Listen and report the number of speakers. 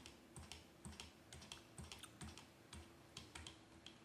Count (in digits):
0